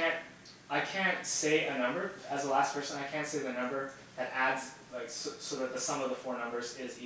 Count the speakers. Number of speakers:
1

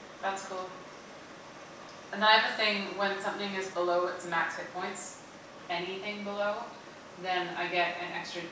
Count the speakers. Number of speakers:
1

